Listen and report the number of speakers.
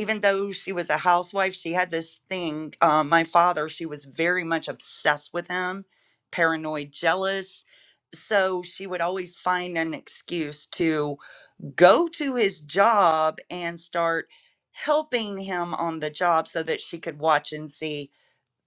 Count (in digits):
1